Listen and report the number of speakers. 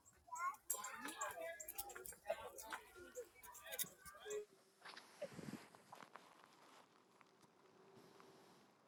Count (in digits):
0